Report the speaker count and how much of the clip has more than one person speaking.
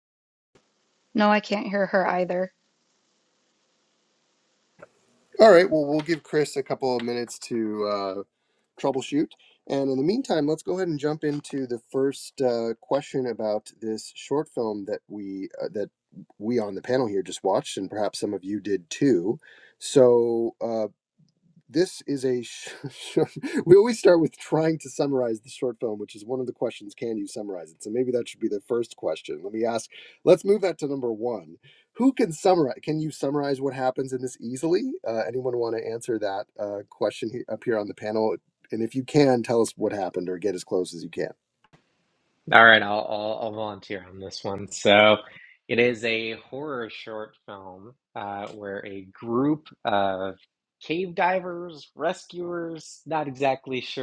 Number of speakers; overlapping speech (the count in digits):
3, no overlap